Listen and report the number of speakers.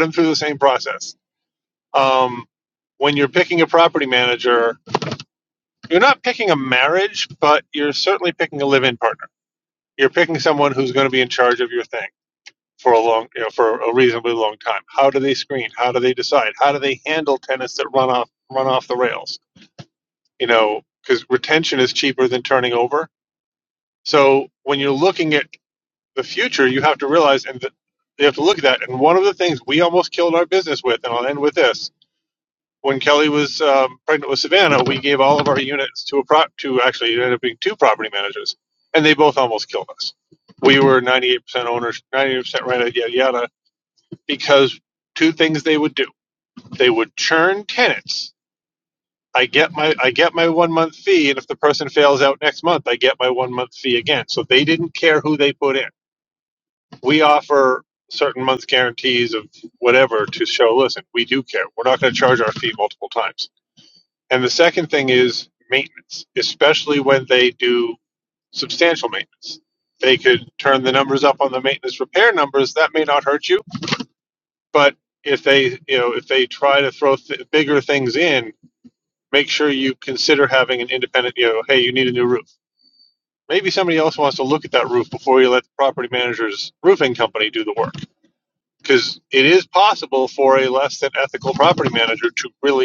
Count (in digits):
1